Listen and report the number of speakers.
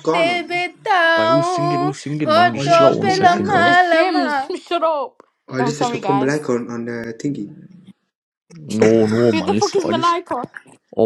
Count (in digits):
4